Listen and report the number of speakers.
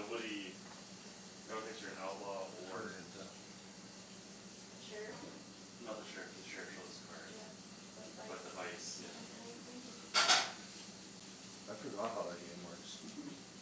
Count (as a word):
three